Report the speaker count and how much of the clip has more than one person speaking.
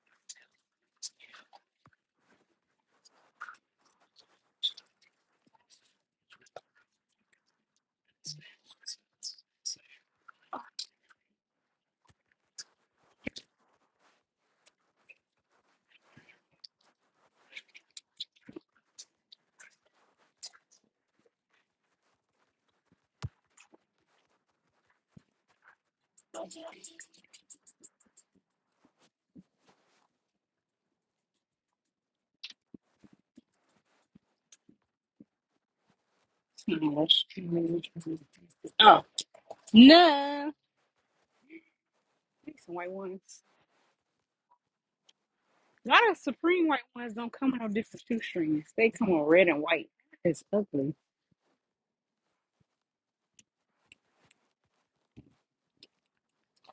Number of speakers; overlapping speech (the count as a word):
one, no overlap